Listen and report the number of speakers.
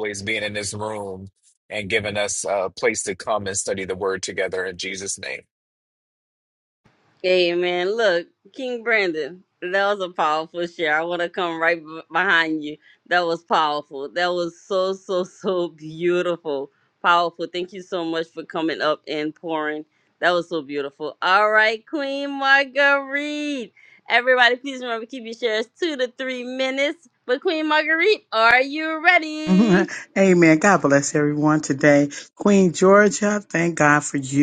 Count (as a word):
three